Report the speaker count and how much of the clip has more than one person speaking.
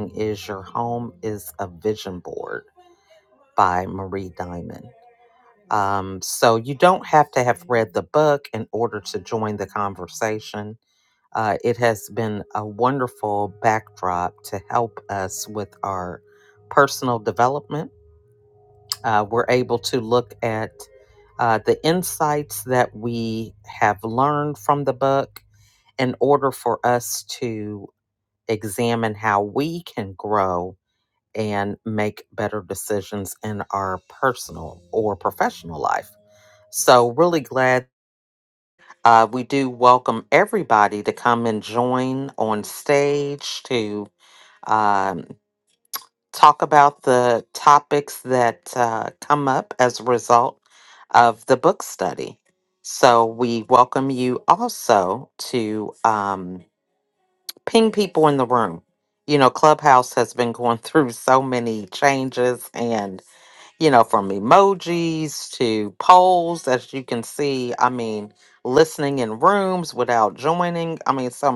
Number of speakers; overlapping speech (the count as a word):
one, no overlap